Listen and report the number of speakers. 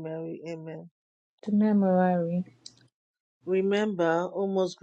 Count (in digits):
2